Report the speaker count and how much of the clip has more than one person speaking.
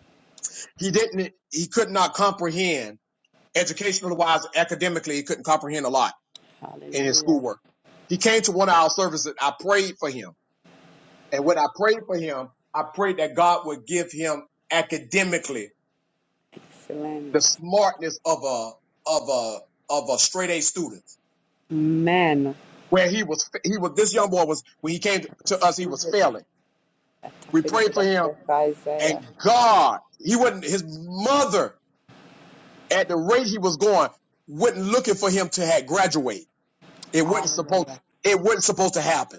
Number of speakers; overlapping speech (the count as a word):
two, about 6%